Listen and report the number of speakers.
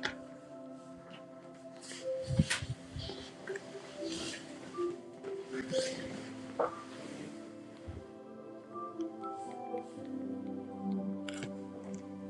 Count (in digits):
0